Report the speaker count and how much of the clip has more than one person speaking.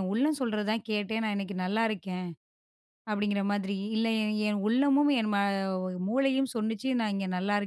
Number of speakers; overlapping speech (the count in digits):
1, no overlap